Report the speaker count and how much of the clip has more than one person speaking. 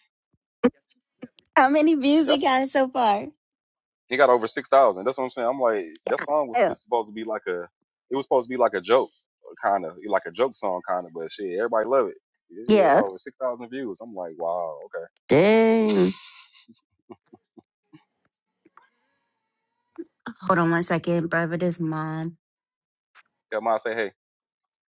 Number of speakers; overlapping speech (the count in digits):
2, about 3%